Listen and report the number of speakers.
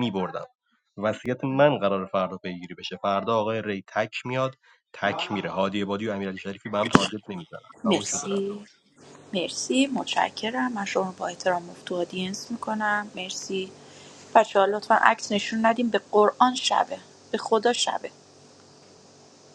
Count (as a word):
two